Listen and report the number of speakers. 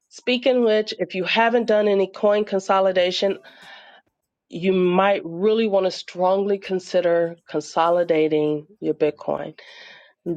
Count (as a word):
one